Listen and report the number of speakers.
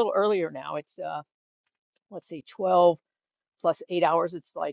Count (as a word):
one